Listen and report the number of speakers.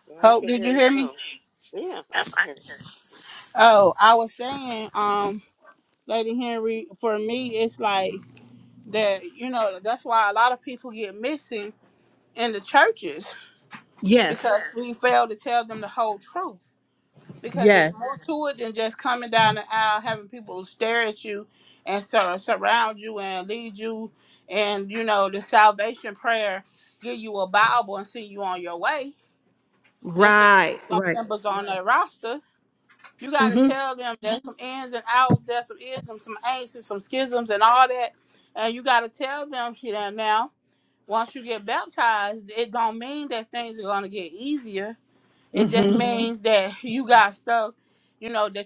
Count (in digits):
3